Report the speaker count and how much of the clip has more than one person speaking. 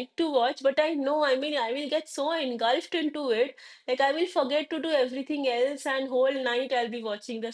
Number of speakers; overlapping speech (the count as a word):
one, no overlap